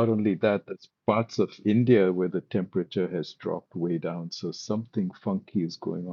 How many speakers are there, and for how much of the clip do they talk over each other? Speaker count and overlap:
one, no overlap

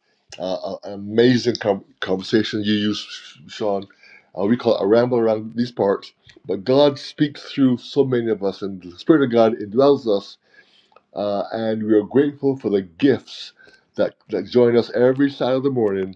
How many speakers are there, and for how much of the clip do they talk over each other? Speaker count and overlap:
one, no overlap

